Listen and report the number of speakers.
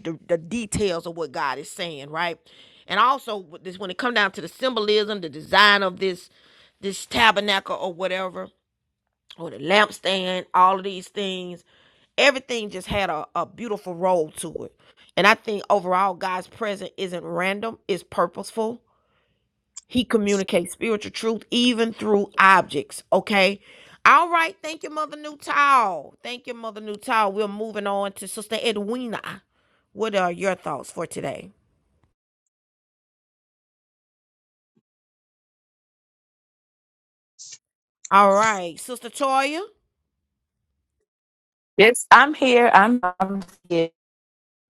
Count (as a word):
two